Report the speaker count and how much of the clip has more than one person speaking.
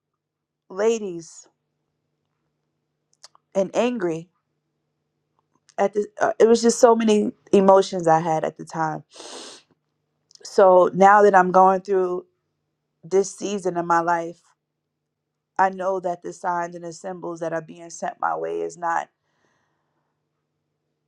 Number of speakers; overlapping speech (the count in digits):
1, no overlap